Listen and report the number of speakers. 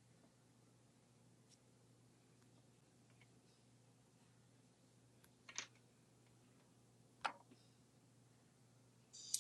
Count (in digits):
0